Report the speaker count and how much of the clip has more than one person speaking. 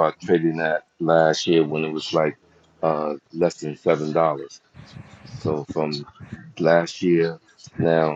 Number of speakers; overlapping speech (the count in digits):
1, no overlap